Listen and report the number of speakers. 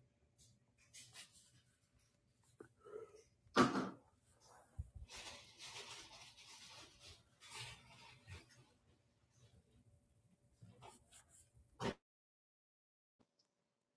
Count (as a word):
zero